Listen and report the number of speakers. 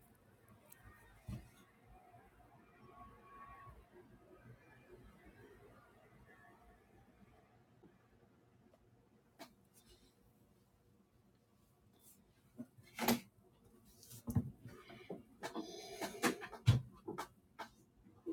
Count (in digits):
0